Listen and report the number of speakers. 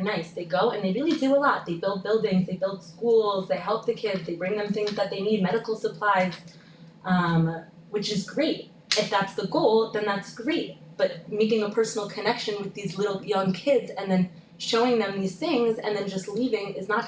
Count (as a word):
one